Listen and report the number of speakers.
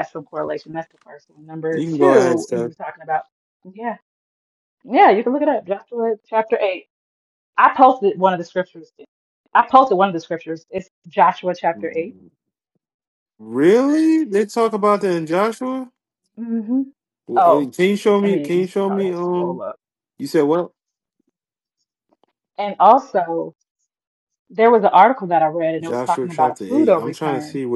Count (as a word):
two